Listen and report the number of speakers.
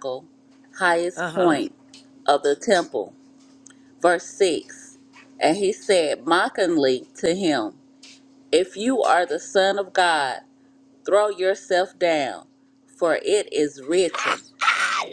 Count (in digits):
2